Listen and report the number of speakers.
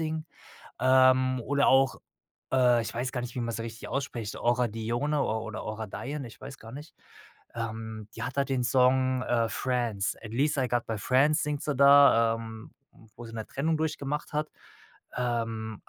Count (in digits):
1